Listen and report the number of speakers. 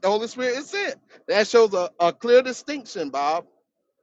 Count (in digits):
1